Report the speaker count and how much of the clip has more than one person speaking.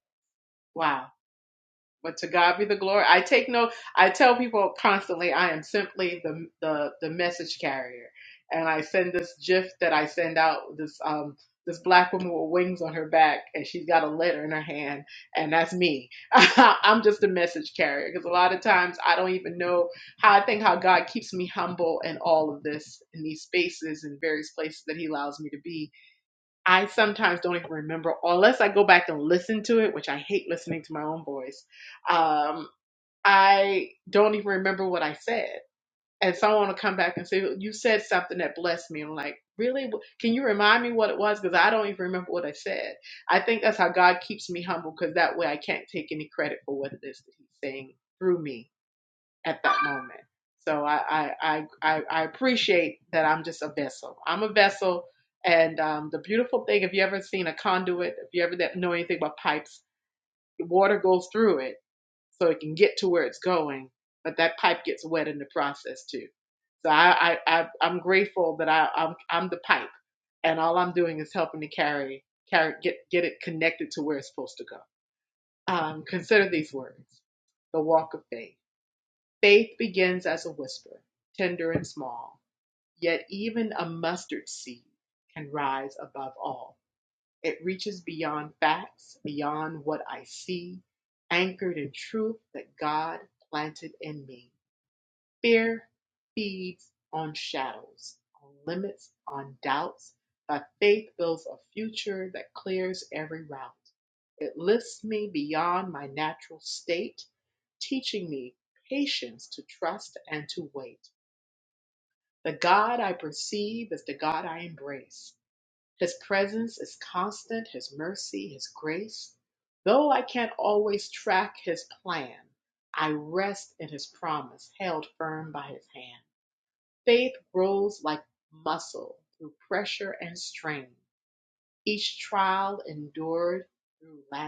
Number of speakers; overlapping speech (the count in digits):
1, no overlap